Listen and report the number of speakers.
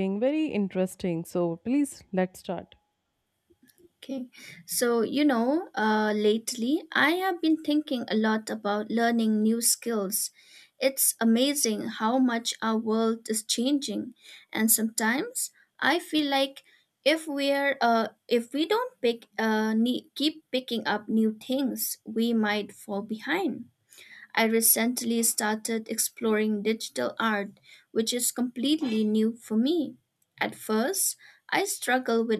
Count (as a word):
two